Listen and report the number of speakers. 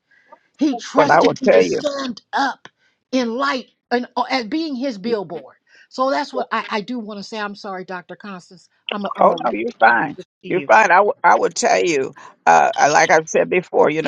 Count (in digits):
2